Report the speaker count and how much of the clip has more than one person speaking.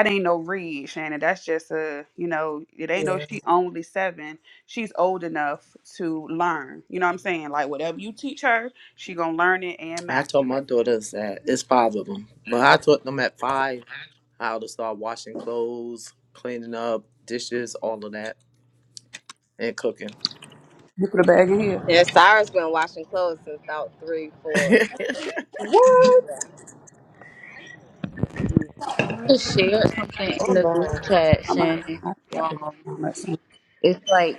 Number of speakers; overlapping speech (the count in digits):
5, about 8%